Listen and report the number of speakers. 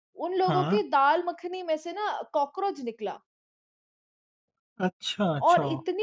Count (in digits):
2